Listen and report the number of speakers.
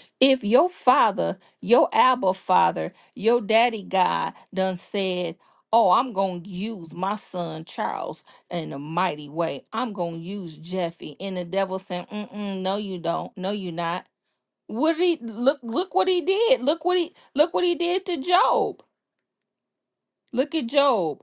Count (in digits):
1